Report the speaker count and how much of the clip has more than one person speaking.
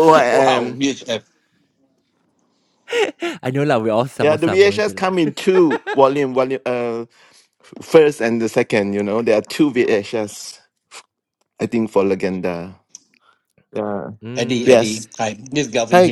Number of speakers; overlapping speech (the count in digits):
3, about 14%